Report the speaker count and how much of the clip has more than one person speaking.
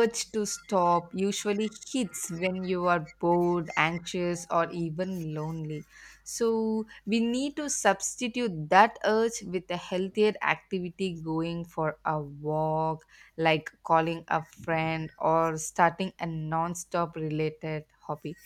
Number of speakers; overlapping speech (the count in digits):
1, no overlap